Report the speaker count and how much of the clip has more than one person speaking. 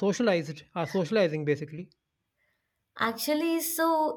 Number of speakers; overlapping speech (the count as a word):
two, no overlap